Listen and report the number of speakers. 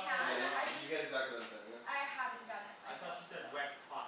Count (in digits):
3